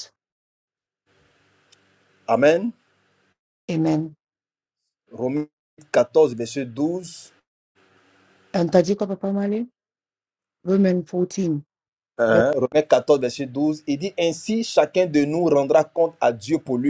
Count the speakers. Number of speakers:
two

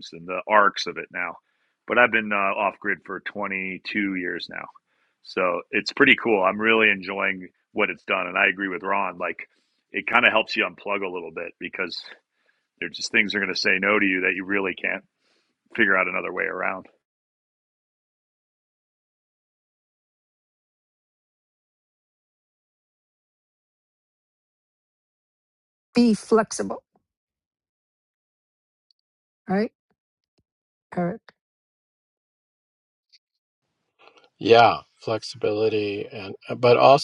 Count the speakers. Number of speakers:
three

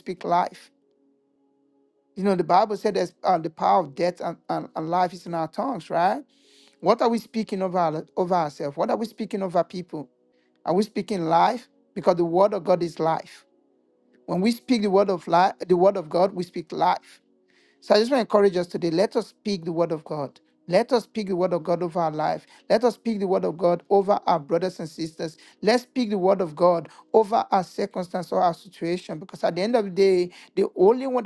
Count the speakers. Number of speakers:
one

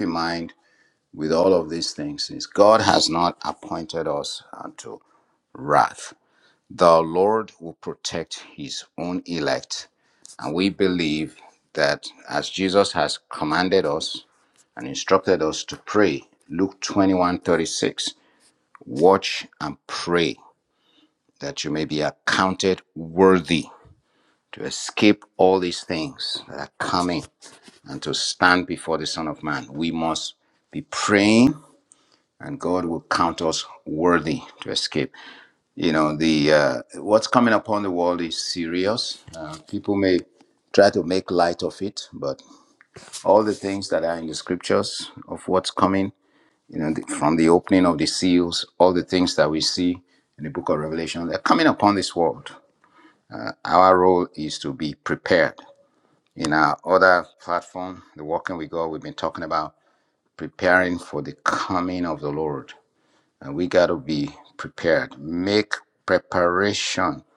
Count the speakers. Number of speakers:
one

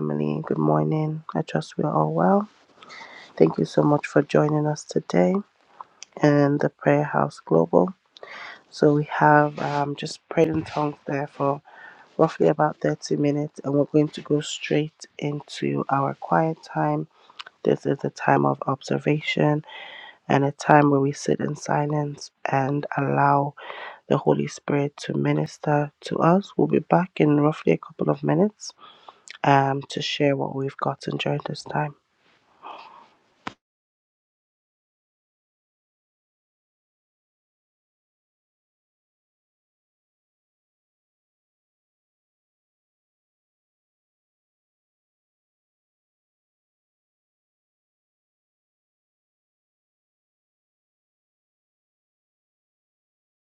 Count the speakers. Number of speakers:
one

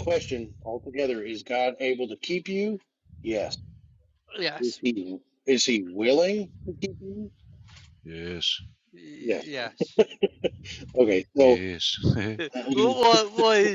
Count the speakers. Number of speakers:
three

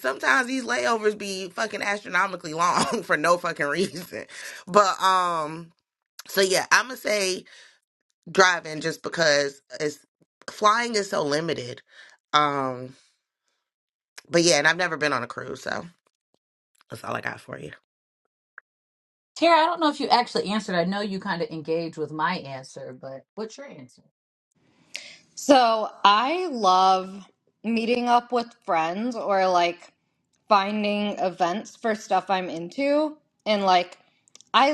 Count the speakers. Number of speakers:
three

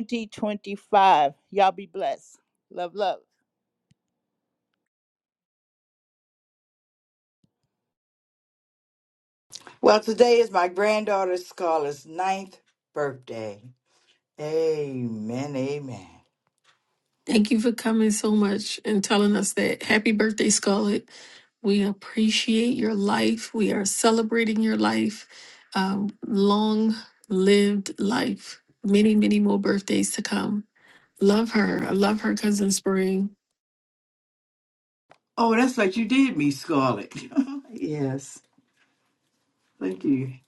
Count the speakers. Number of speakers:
three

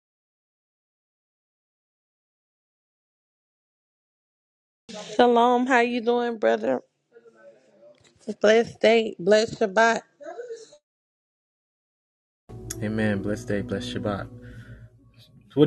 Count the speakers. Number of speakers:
two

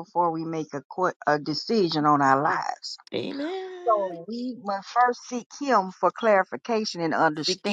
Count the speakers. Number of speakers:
two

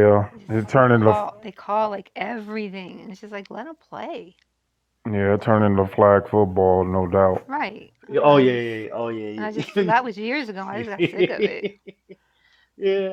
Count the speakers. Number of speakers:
three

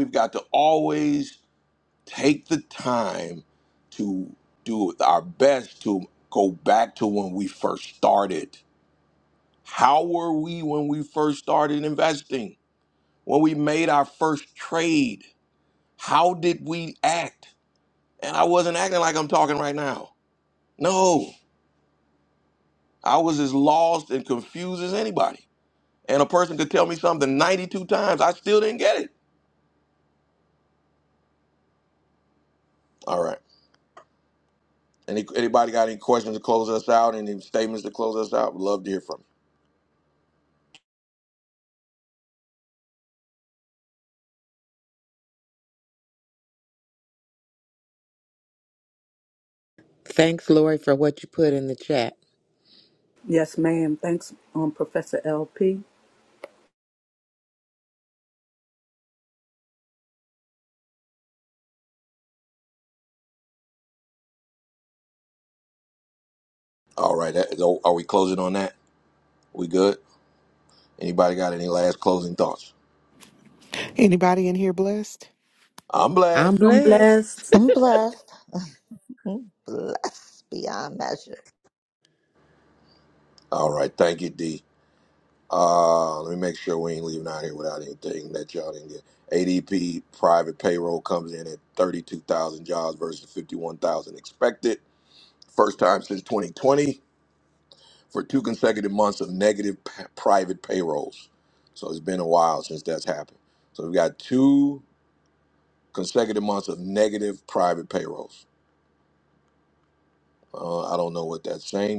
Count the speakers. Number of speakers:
five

